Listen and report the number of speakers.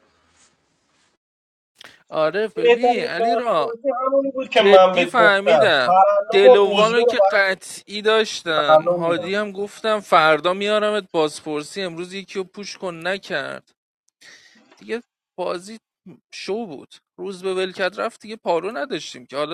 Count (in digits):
2